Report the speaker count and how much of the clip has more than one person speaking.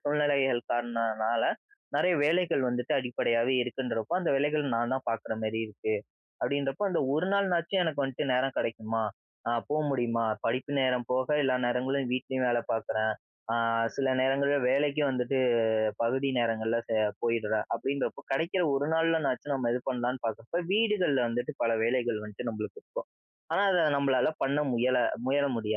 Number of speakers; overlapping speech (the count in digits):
1, no overlap